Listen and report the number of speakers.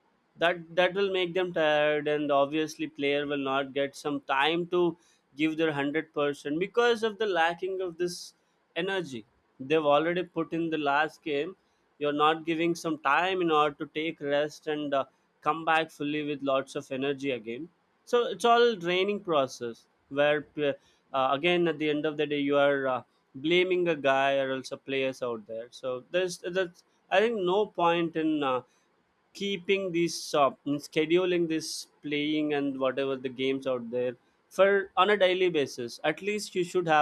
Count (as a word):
one